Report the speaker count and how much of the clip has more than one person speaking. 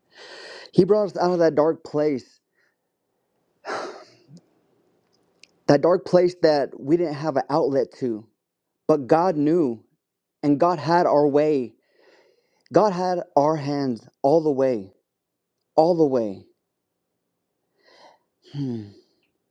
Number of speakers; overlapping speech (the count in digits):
1, no overlap